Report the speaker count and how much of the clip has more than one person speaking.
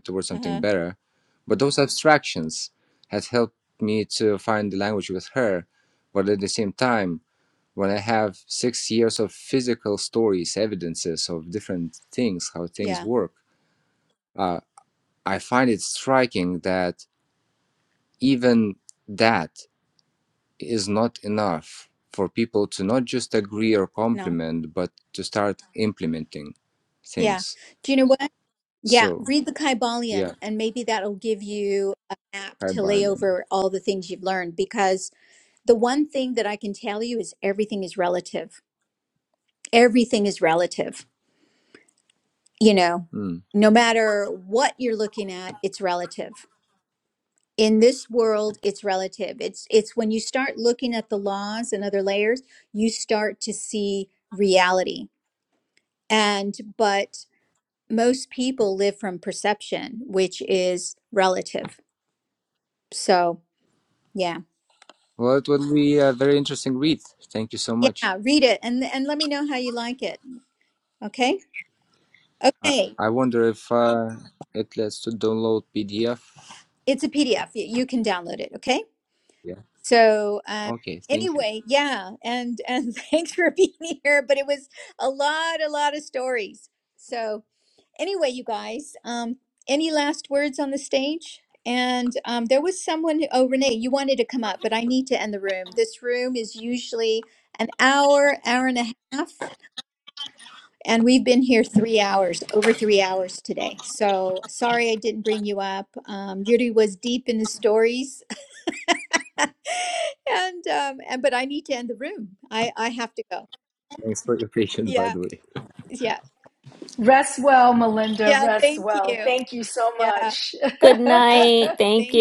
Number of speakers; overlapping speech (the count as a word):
four, about 4%